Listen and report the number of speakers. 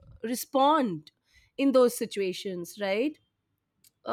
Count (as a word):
one